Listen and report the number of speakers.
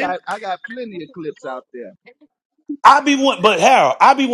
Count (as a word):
two